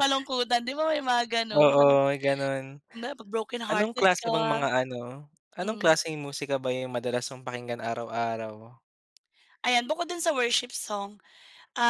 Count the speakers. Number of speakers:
2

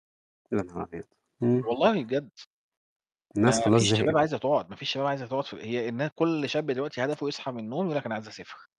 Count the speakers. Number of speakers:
2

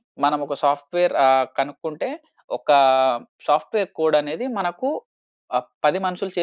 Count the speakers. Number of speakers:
1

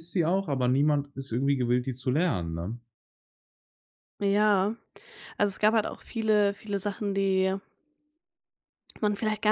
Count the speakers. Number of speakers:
2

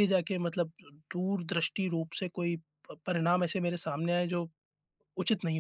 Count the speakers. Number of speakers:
1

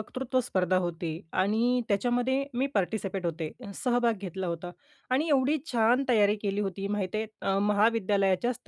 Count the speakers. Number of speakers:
1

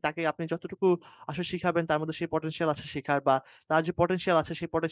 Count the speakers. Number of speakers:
1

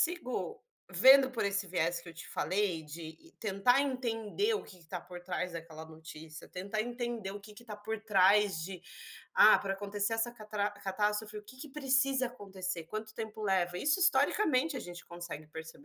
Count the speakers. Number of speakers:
1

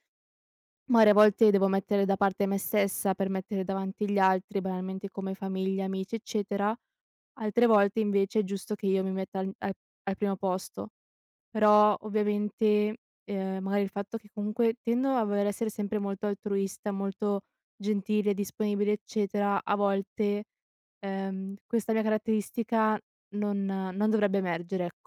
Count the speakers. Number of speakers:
1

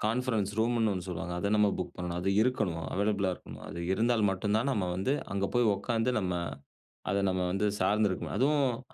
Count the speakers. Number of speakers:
1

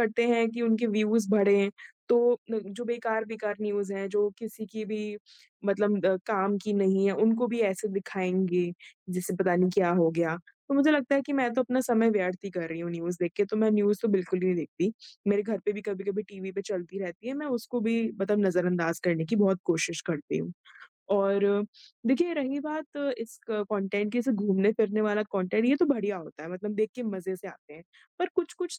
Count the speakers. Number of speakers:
1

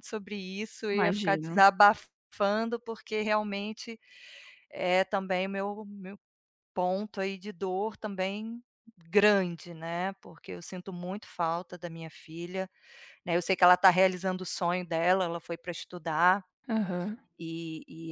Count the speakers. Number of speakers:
2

